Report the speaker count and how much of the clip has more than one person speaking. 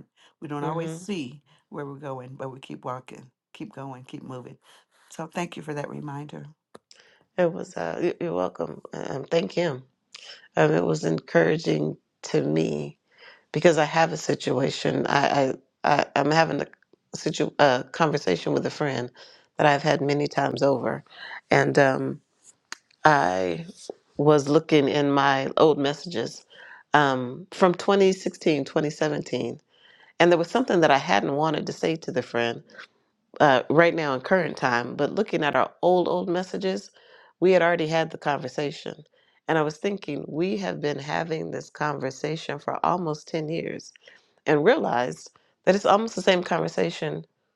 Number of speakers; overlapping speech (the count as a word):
two, about 1%